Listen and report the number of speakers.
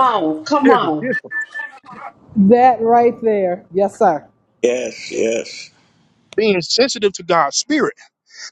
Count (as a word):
four